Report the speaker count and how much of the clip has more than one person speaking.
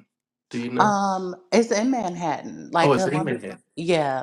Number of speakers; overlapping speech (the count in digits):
2, about 18%